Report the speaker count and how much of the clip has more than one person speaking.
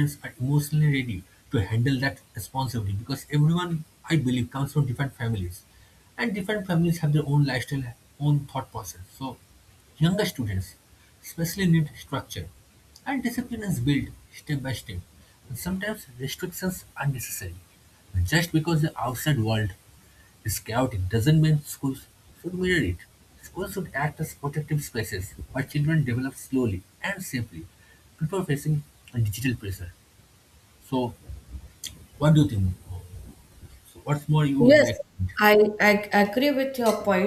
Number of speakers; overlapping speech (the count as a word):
two, about 1%